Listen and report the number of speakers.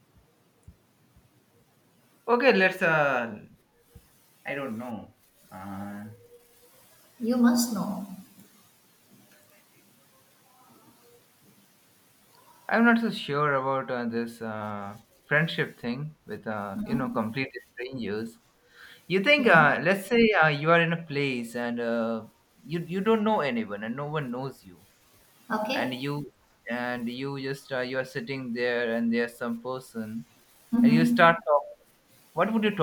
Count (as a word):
two